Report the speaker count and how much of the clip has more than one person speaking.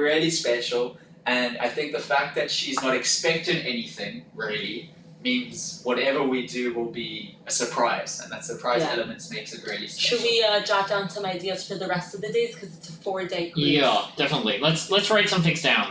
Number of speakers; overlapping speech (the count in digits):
3, about 6%